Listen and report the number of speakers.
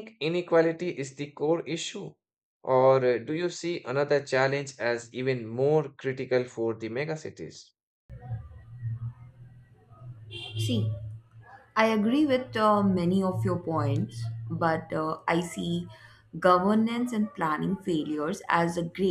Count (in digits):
2